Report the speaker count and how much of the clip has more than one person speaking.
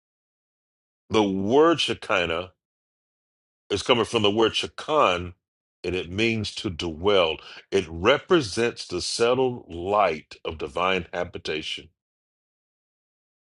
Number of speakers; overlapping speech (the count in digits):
1, no overlap